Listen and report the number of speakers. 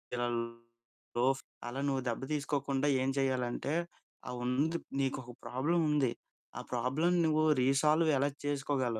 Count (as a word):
one